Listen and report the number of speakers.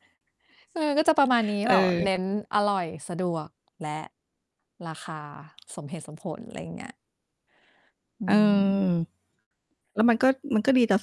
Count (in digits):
2